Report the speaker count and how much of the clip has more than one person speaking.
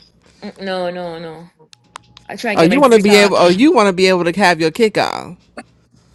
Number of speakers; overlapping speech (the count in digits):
2, about 13%